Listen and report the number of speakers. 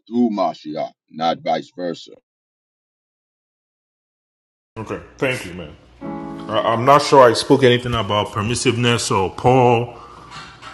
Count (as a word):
two